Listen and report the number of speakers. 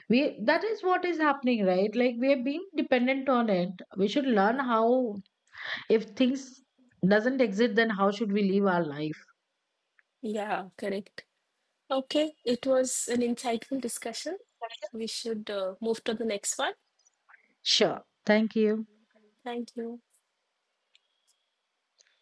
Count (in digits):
2